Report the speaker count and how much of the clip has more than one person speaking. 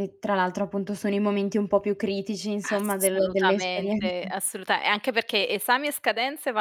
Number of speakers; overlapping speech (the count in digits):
2, about 11%